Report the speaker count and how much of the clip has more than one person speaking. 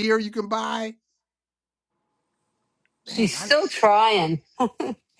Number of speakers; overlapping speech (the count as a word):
two, about 8%